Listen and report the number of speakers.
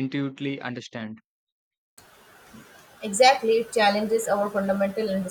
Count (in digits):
2